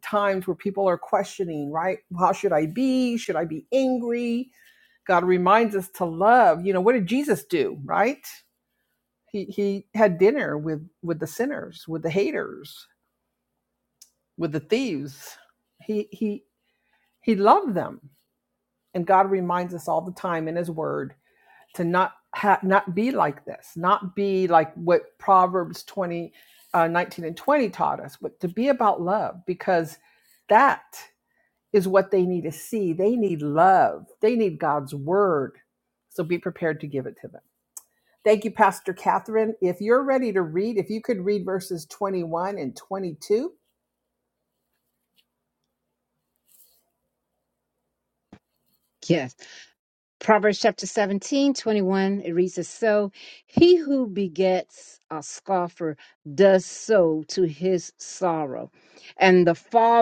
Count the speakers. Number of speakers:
2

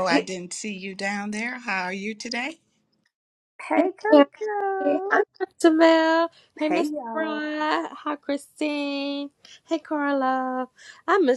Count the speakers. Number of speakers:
3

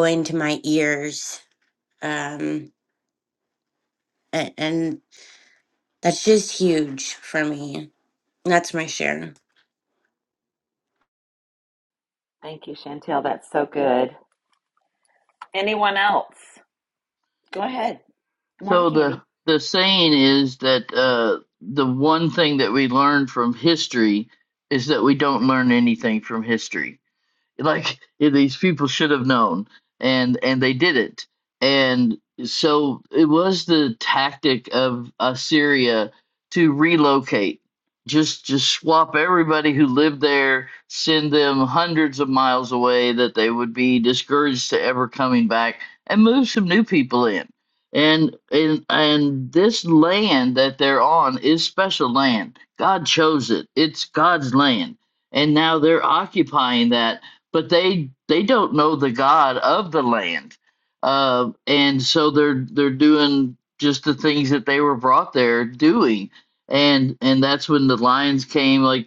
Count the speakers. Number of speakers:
3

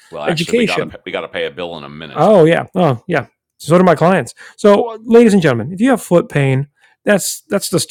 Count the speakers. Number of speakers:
2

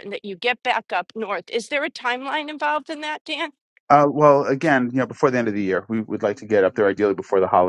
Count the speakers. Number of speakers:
2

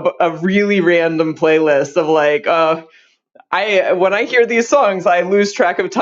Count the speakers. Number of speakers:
1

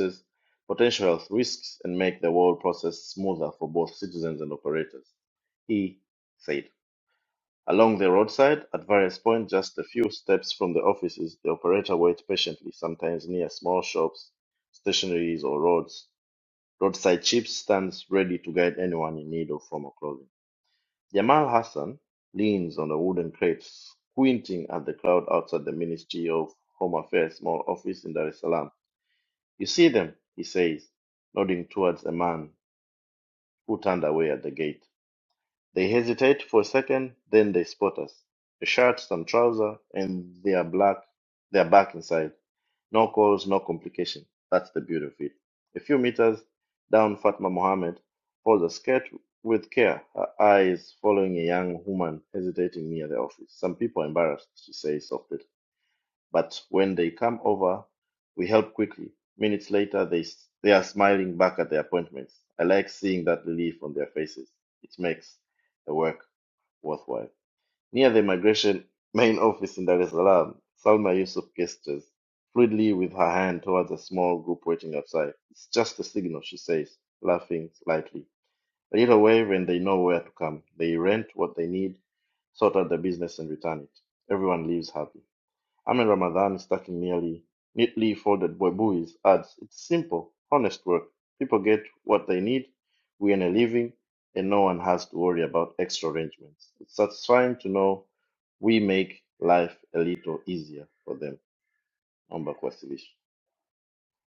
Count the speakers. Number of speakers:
1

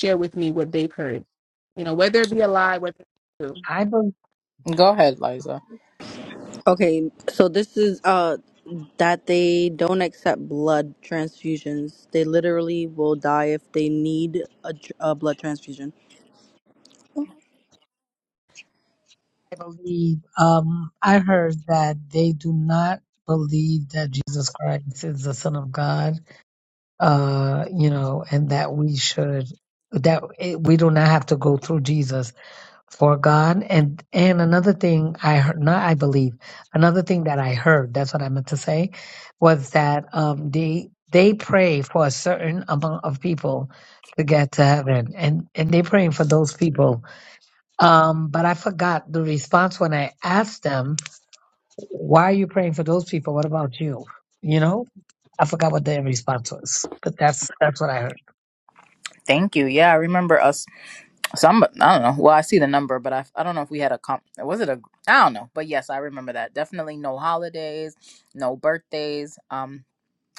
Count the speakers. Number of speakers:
4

